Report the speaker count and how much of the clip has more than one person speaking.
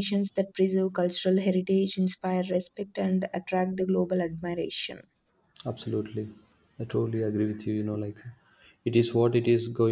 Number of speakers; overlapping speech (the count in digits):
2, no overlap